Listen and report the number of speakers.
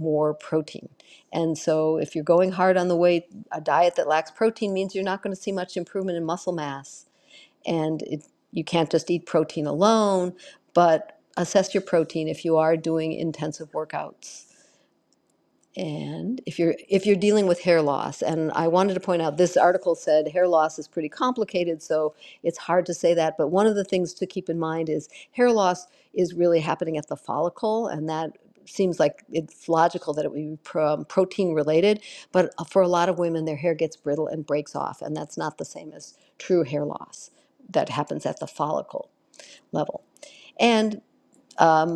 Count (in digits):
1